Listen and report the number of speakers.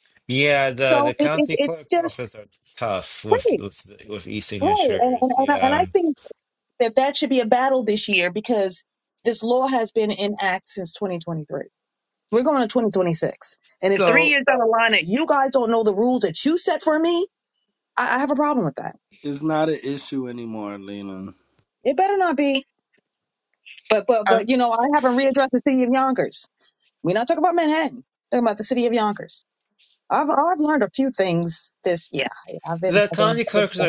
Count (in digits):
3